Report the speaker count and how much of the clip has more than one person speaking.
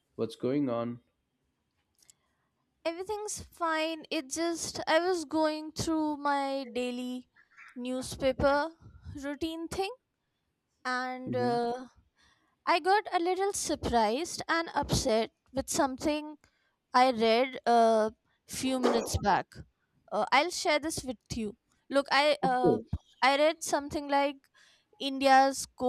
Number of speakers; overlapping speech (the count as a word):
two, about 3%